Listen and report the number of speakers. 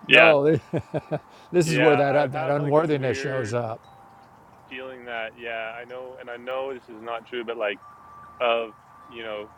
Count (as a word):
two